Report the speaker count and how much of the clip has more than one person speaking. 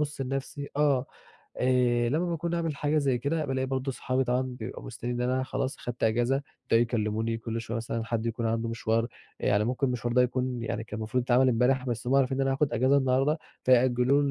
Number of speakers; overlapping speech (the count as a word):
one, no overlap